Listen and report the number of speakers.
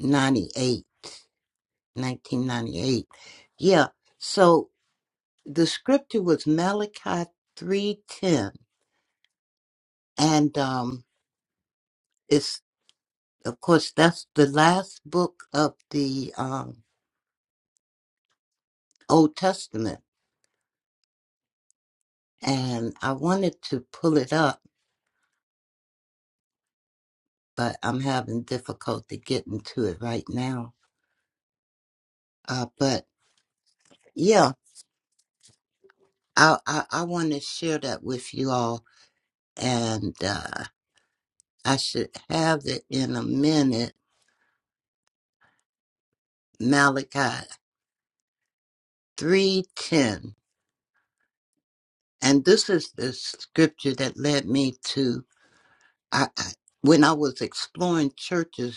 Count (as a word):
one